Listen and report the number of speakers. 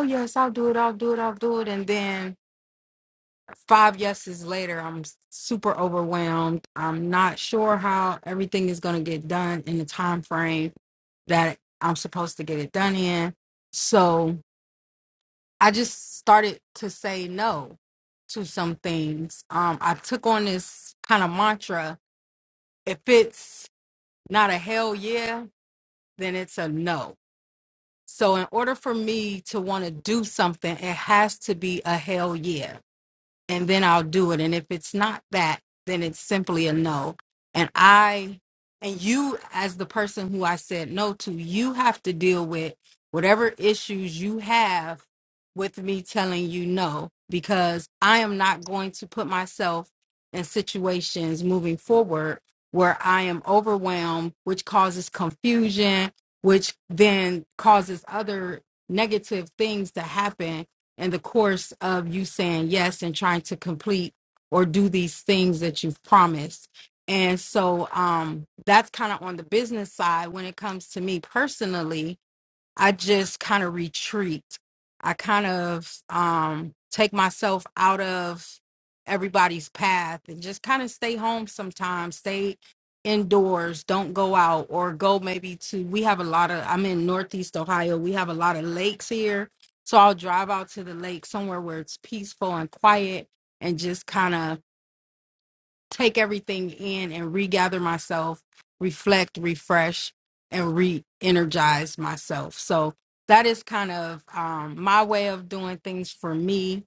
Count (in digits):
1